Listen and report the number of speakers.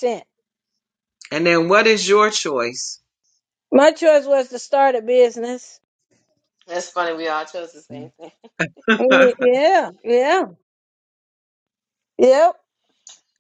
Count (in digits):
3